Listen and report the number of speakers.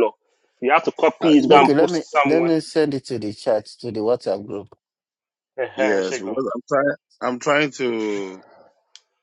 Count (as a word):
three